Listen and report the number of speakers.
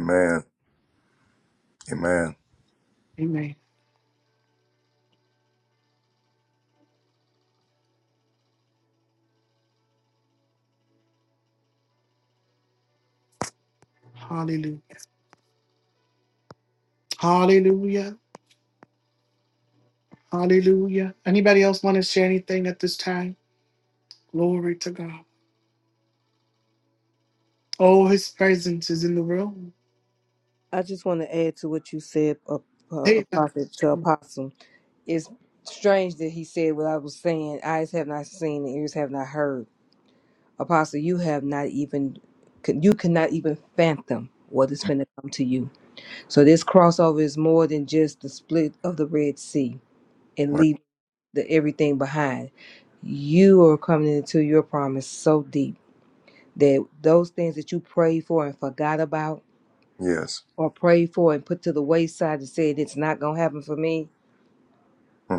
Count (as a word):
three